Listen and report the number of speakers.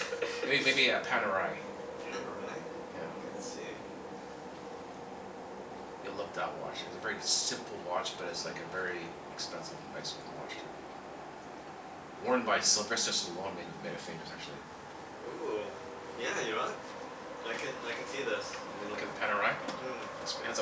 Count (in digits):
2